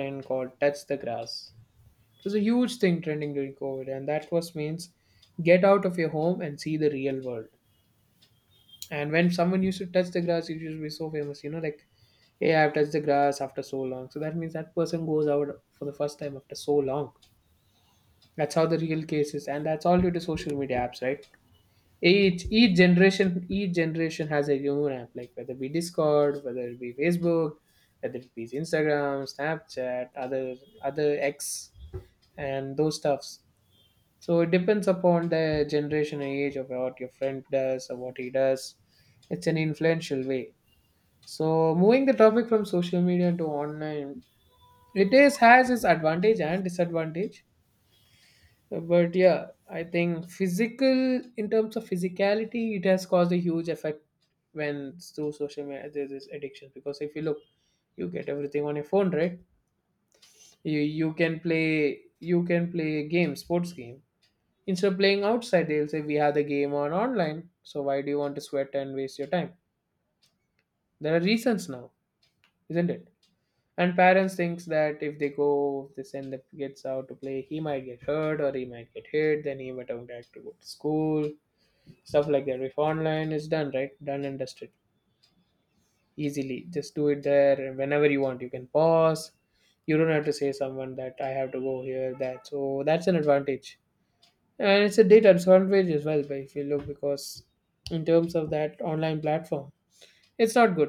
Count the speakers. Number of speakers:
one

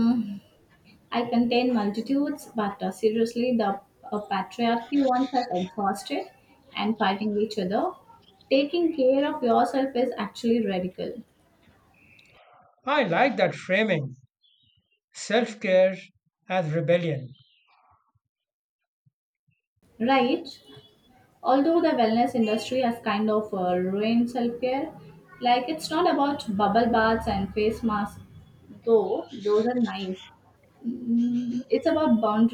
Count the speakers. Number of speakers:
two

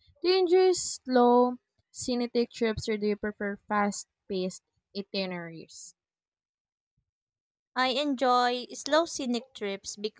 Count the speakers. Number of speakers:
two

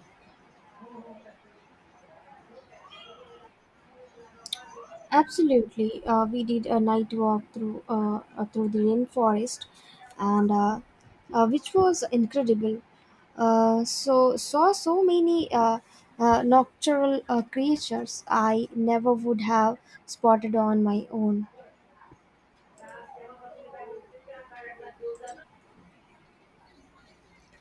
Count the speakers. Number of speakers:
one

